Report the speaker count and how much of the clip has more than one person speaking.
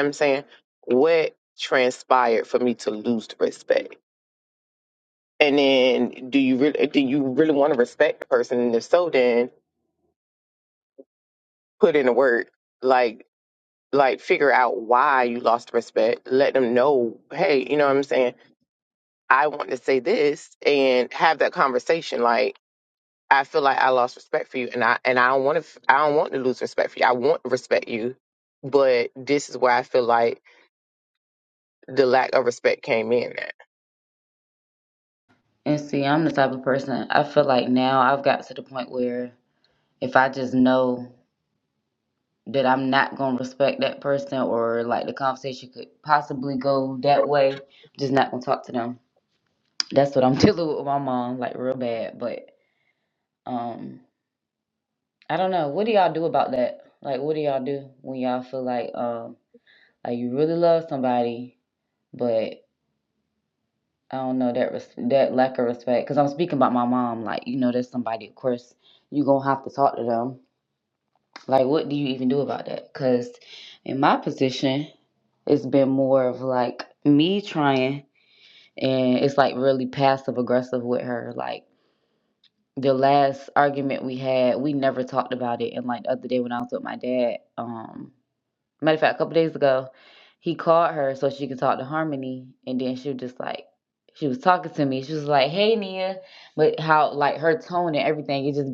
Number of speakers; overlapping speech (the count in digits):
2, no overlap